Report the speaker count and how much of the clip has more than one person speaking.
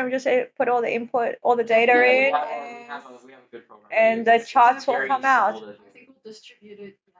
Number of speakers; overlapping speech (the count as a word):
three, about 51%